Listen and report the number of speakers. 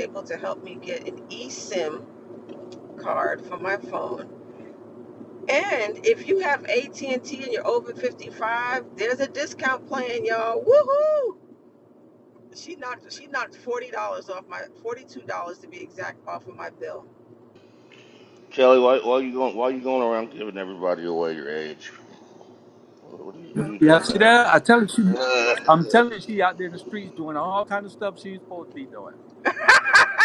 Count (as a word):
three